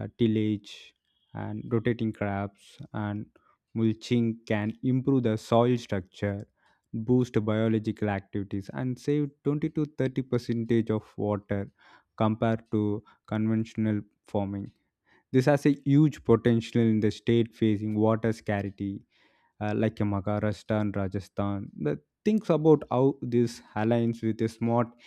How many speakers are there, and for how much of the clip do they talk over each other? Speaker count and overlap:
one, no overlap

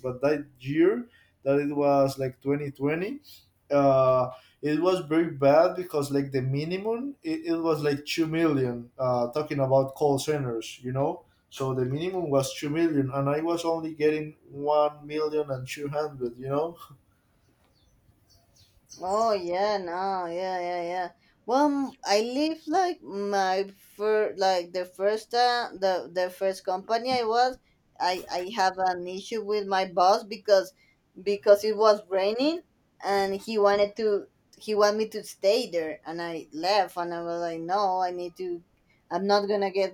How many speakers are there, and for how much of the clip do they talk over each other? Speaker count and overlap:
two, no overlap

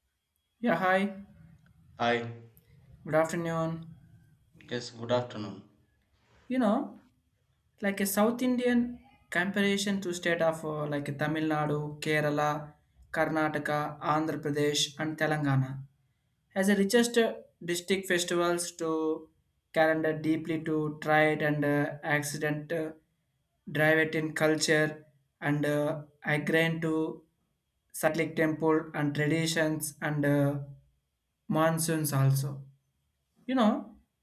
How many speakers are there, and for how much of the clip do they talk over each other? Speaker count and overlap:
two, no overlap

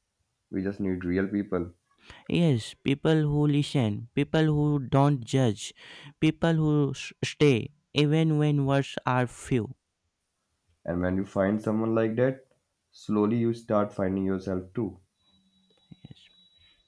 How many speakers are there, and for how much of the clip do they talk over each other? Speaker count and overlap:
two, no overlap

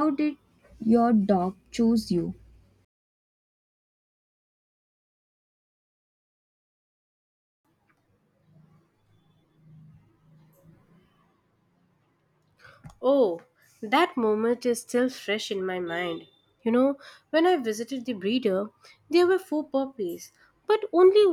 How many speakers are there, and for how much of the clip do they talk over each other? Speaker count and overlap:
two, no overlap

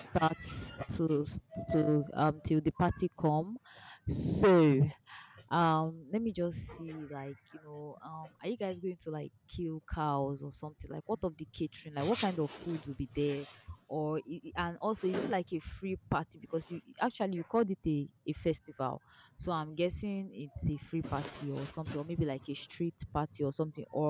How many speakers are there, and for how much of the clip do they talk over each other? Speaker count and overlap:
one, no overlap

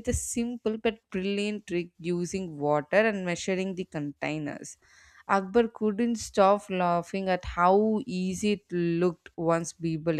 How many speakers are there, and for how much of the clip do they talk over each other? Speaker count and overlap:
one, no overlap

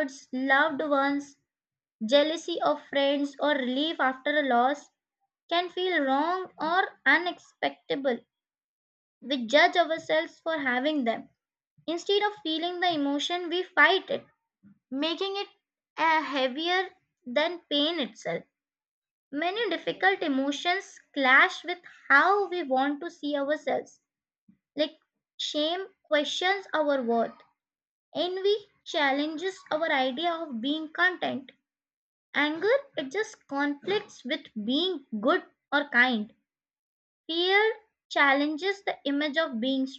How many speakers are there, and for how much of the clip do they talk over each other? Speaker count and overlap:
one, no overlap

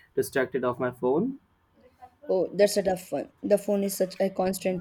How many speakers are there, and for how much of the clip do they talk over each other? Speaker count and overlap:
two, no overlap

